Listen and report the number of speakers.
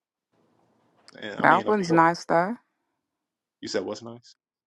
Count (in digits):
2